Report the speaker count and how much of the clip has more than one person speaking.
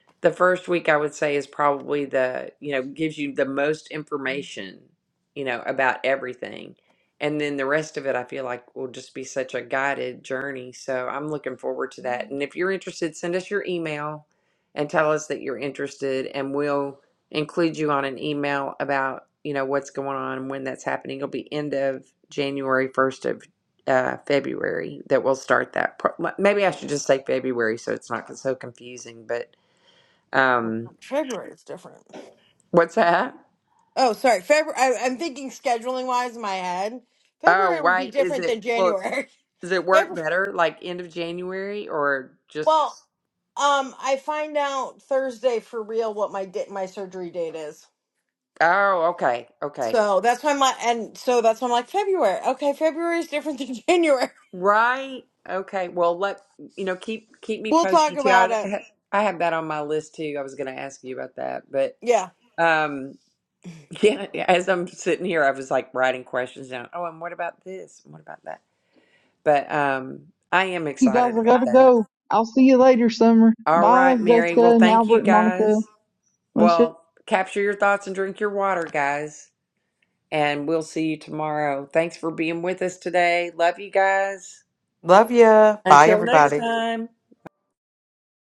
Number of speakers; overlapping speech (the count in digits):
4, about 8%